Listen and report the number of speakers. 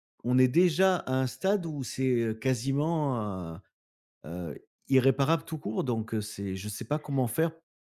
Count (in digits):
1